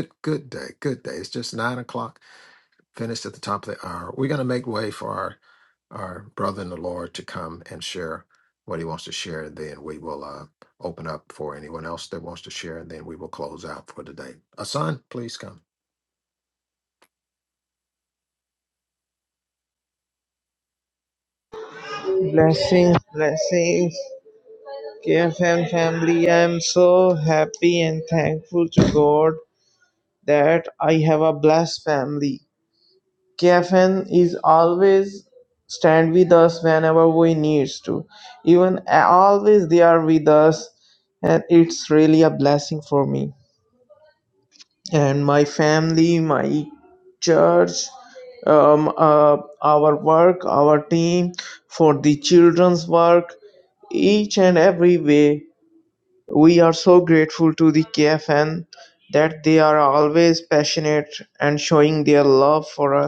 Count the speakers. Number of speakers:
two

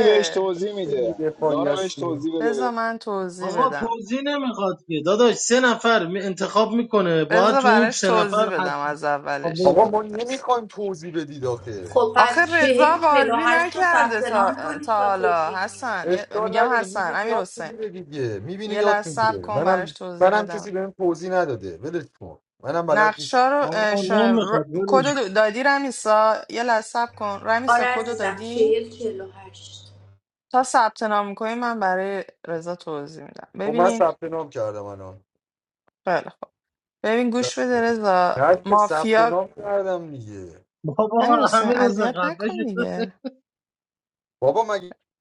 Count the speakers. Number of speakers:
five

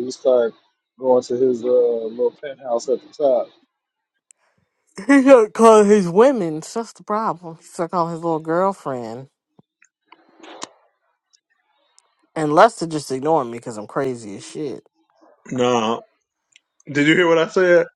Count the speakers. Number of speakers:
three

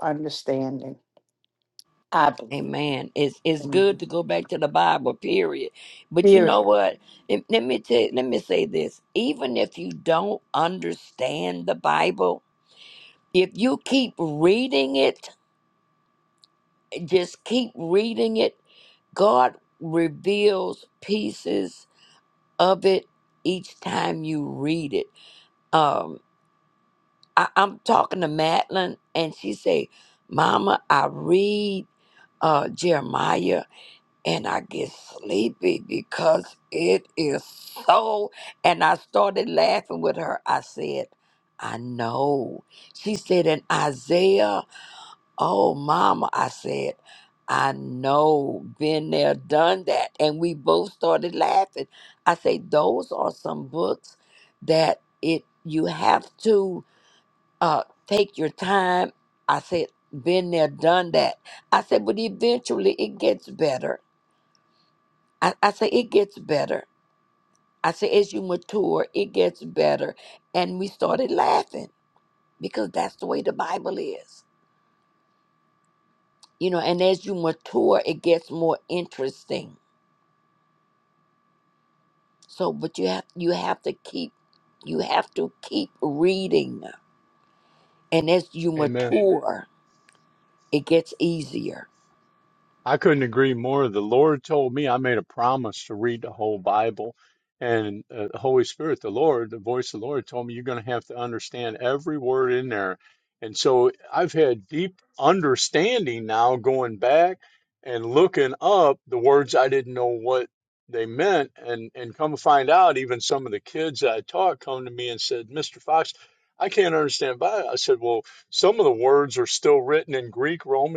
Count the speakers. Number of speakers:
three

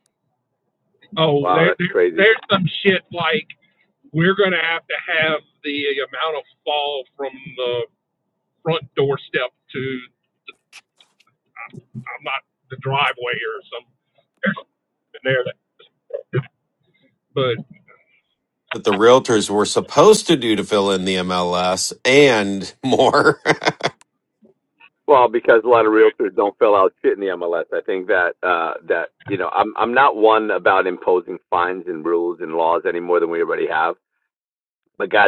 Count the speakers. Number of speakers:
three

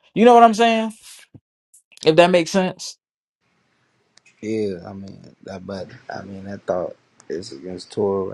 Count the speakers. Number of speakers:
two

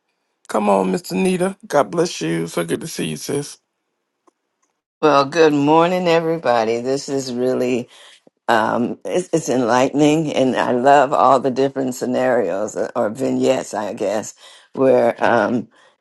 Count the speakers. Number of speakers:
two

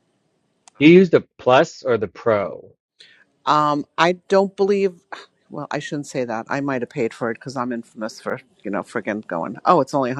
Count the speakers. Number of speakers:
two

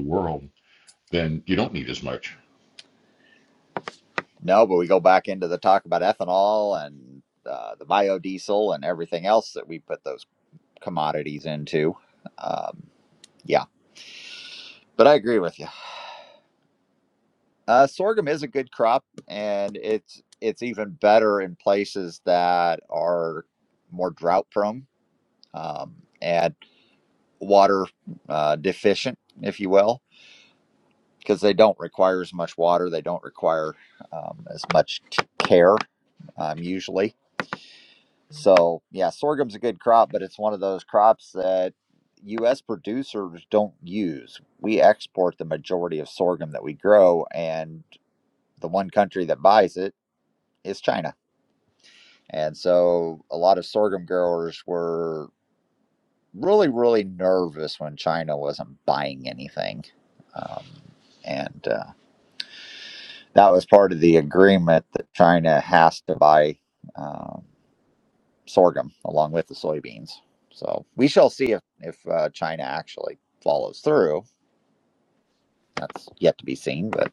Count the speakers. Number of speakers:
two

